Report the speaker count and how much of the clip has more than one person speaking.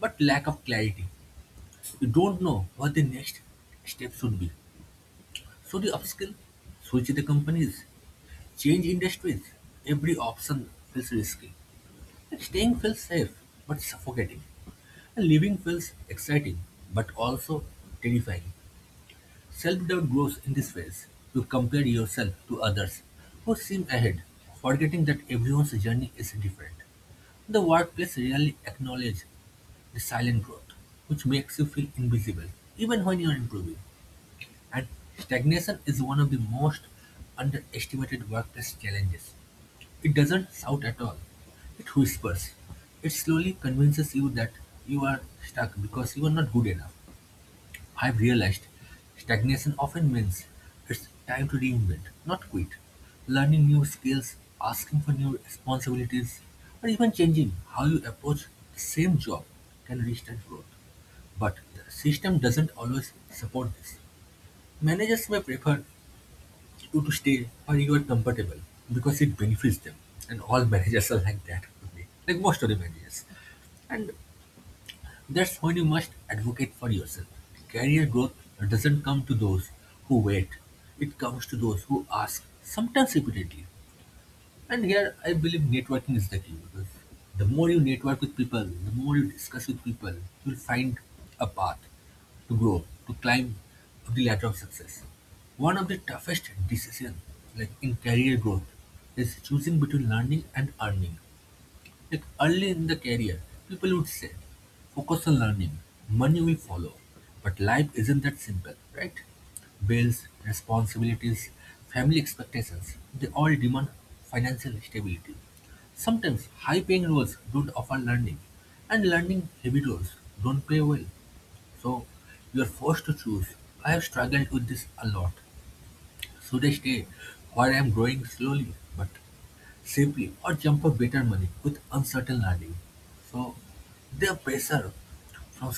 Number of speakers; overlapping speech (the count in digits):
1, no overlap